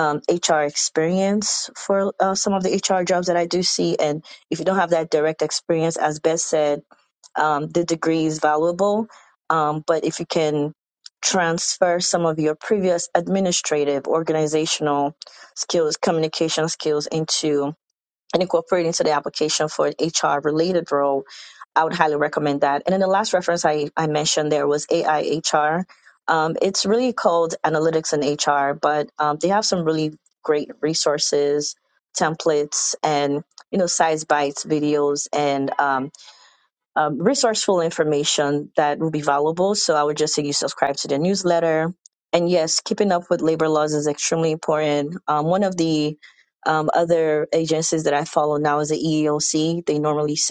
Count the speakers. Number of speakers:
1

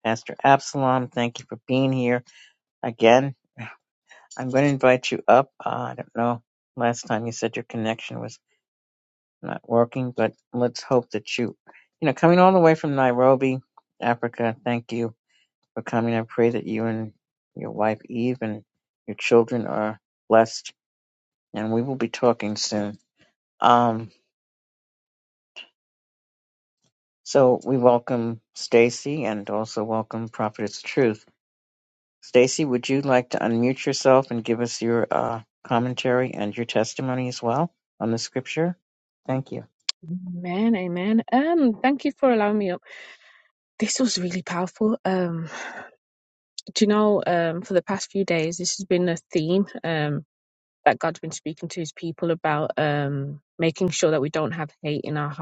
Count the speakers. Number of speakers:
2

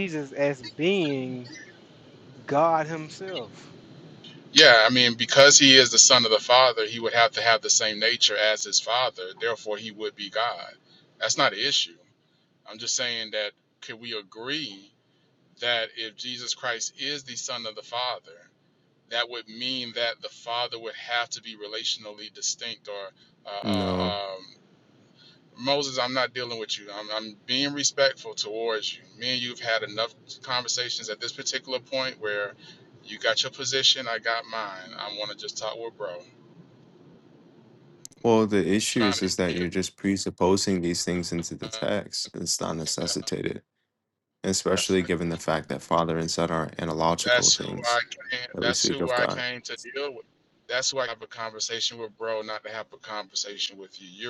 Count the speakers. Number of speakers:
3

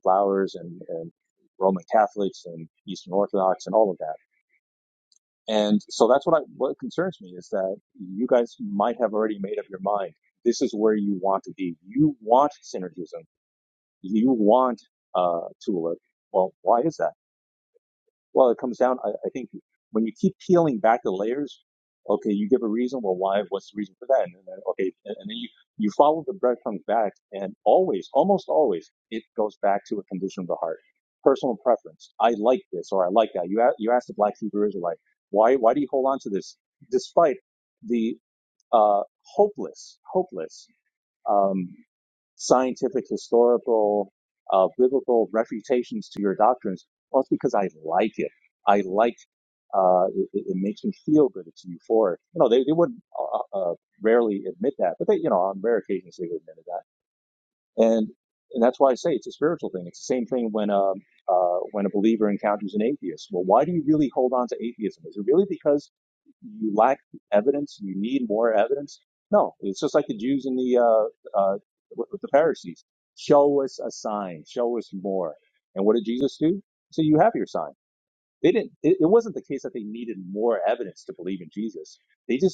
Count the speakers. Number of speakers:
1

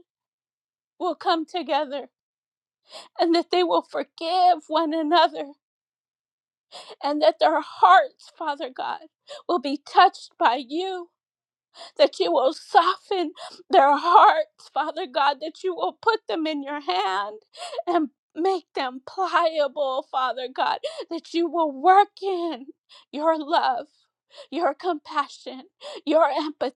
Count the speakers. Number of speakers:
1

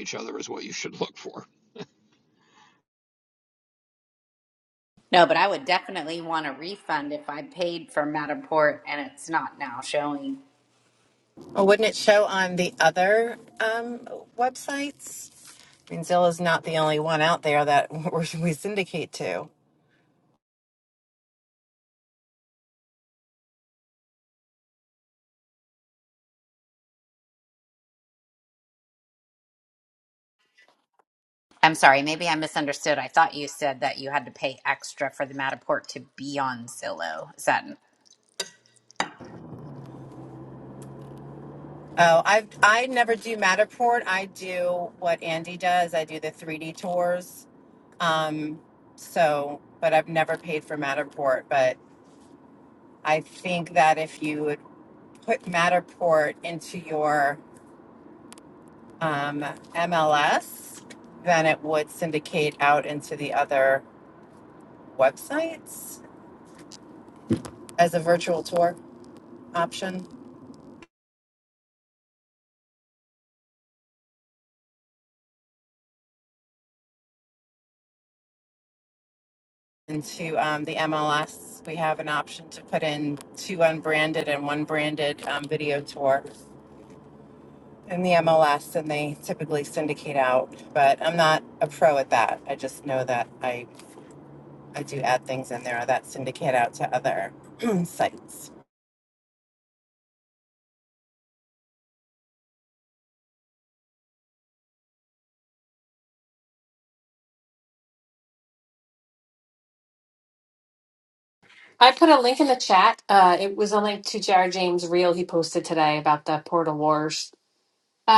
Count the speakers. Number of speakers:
4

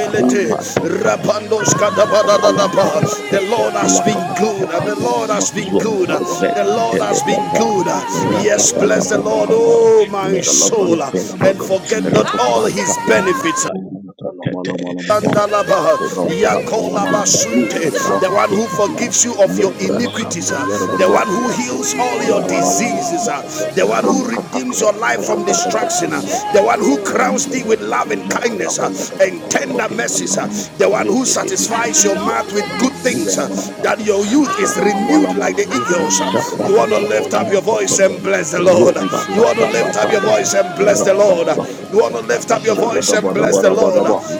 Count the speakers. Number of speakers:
3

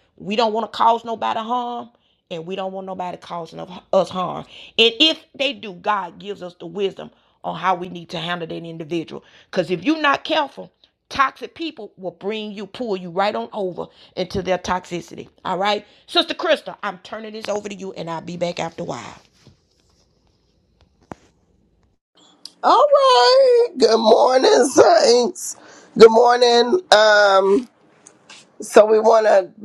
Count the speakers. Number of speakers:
2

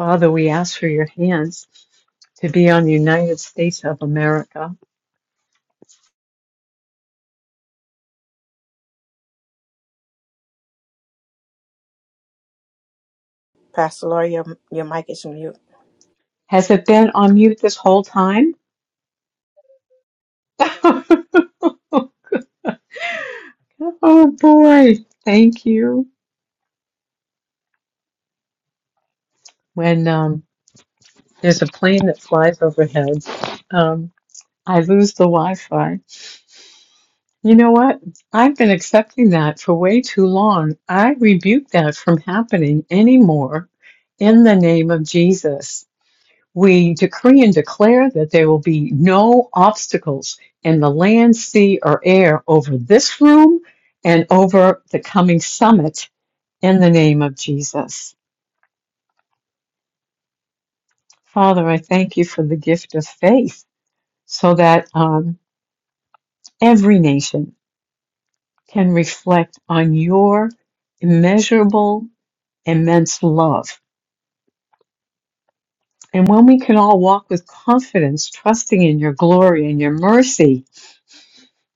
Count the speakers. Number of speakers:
2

